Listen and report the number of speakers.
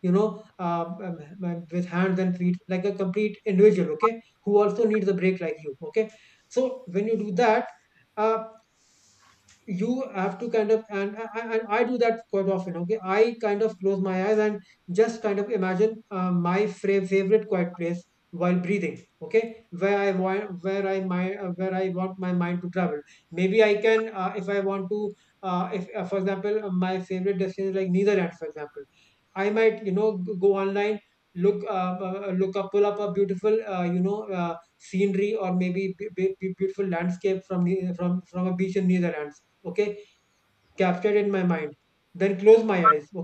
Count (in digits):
1